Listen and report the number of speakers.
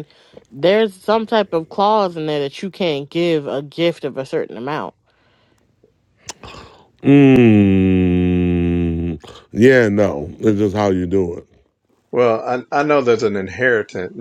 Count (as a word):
three